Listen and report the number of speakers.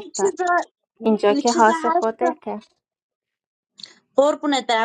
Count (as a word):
two